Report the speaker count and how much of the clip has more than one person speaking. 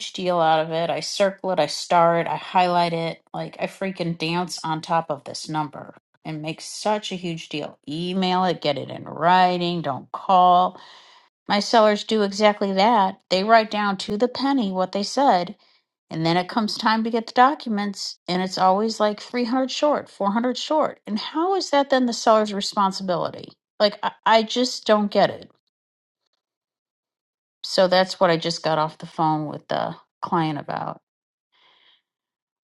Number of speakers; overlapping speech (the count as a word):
one, no overlap